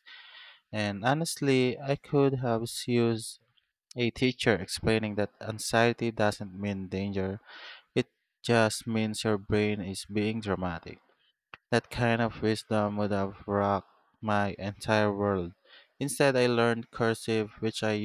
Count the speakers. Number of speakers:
1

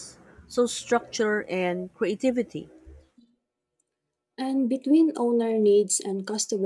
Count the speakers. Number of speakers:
2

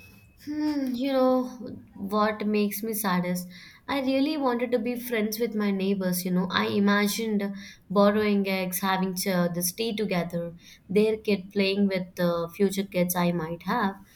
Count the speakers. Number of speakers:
1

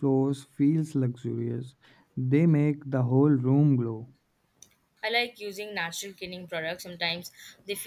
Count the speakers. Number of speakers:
2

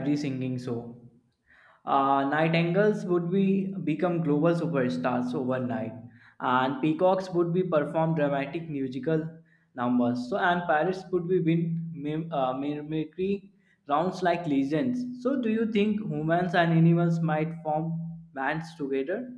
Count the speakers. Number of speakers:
1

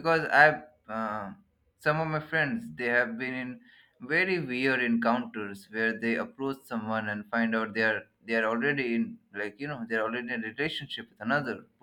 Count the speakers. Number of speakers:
1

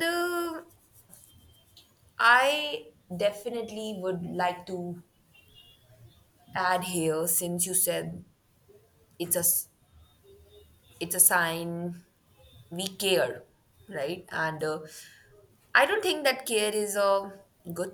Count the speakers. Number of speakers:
1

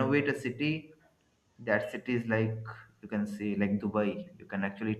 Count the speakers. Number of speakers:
1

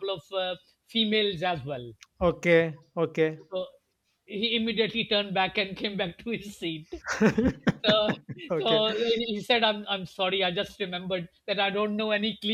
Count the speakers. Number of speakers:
2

